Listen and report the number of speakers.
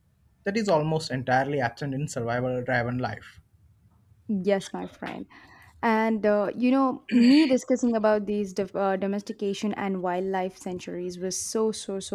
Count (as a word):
two